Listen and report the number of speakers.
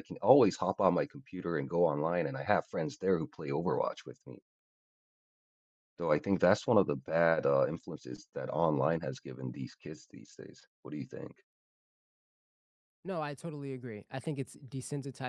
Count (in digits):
2